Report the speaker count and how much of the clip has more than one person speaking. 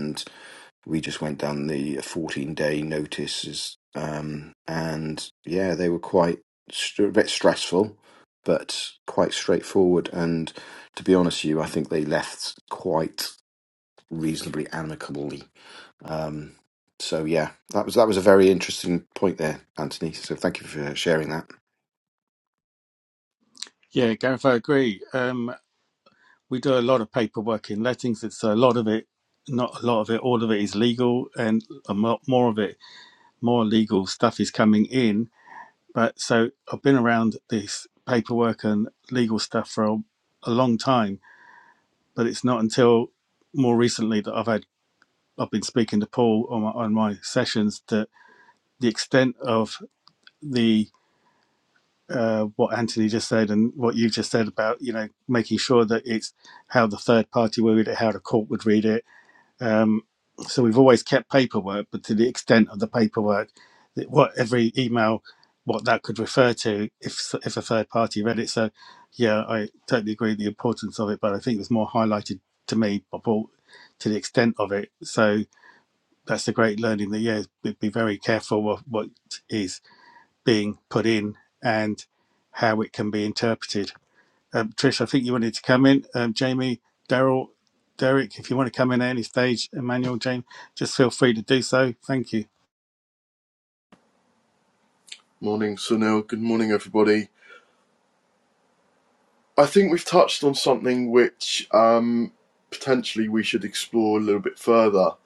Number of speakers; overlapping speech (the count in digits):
3, no overlap